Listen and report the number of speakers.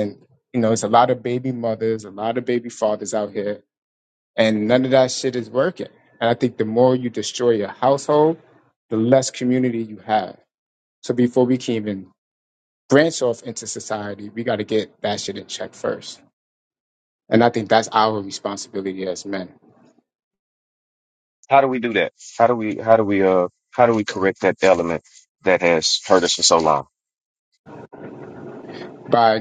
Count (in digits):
2